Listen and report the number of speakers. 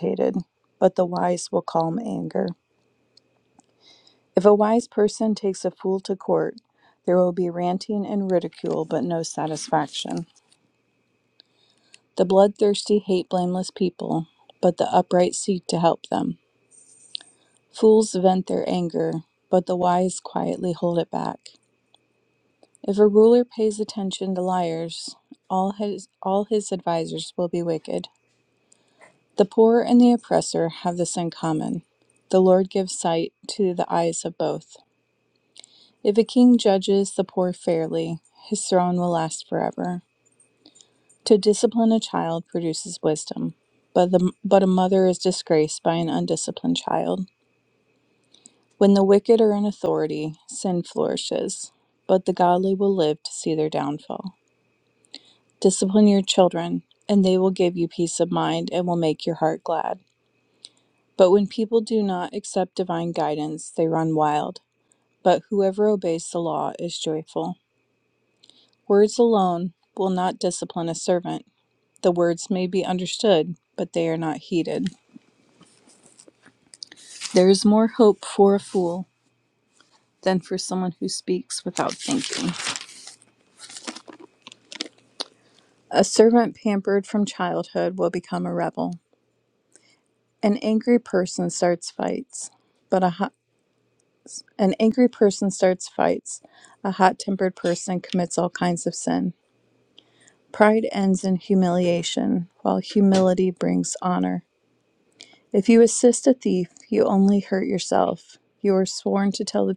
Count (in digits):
1